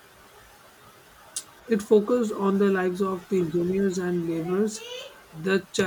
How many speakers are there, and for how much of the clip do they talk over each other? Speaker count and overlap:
1, no overlap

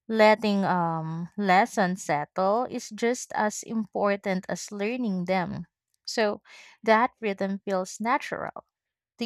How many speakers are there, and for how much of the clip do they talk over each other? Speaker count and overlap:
1, no overlap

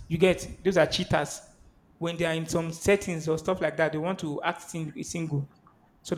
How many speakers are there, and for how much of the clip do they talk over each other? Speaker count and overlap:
1, no overlap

